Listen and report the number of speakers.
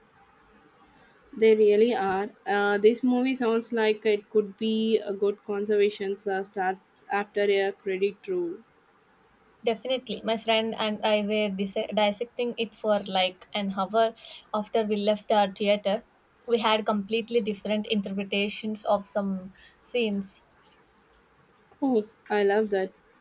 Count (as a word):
two